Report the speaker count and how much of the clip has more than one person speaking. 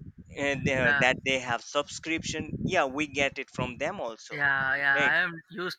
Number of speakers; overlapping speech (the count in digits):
2, about 9%